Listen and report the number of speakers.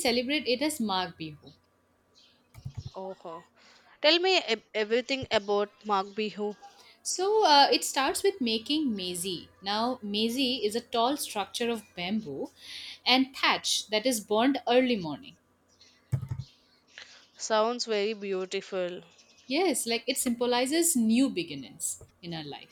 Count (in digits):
2